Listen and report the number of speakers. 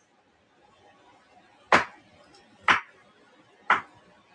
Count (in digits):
0